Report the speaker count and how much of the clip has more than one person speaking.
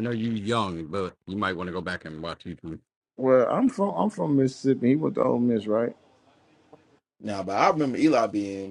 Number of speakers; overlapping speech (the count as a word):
three, no overlap